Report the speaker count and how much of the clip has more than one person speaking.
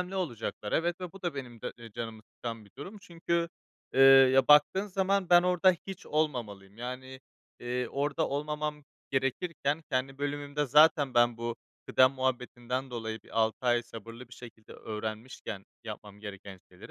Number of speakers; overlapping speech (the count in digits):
1, no overlap